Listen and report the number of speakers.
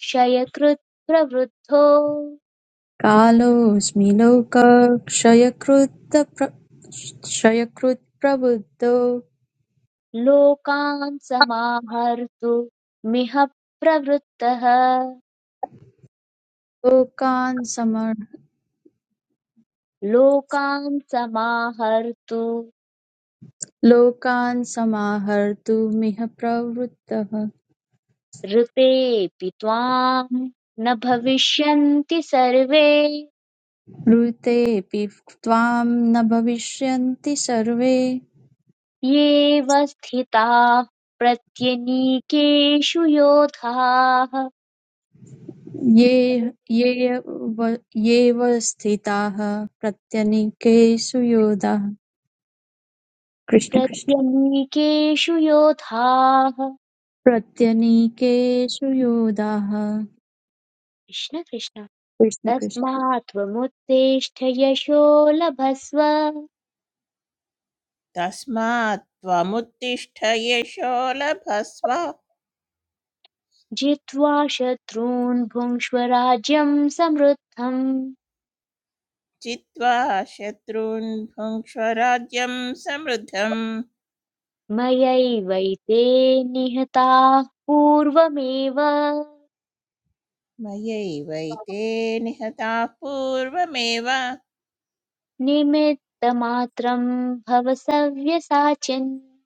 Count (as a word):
three